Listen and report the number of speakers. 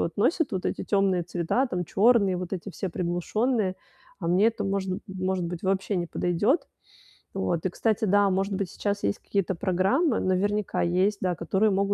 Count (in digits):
1